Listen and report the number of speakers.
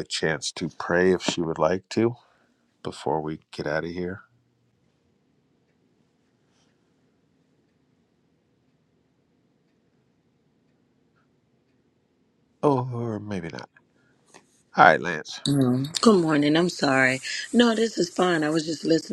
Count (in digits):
2